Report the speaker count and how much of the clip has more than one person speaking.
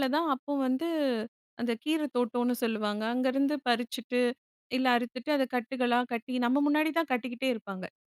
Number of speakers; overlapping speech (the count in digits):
1, no overlap